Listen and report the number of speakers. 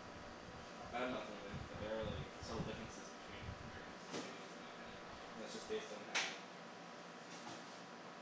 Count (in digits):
1